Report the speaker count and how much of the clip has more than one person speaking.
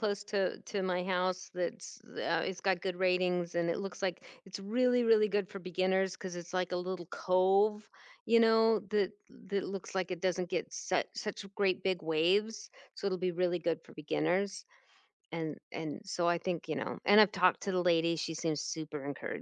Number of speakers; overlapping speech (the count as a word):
one, no overlap